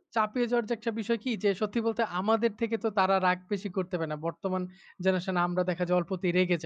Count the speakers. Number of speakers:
1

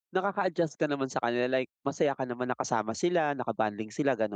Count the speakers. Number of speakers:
1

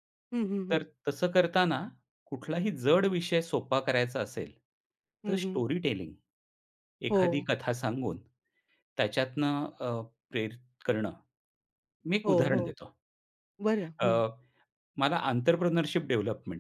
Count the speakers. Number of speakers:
2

